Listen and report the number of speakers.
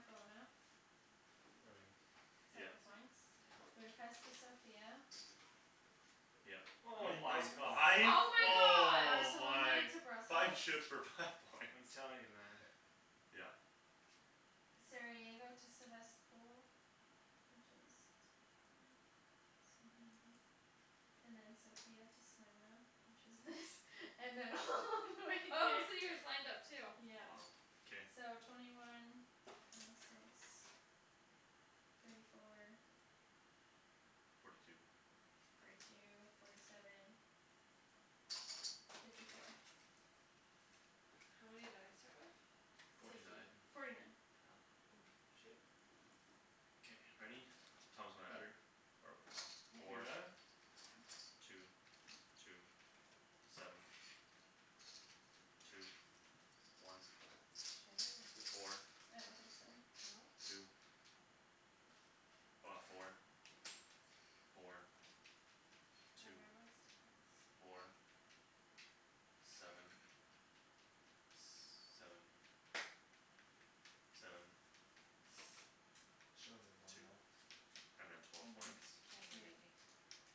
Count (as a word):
four